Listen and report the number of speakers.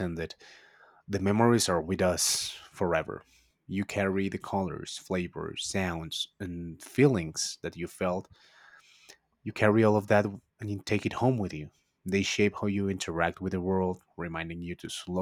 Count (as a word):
one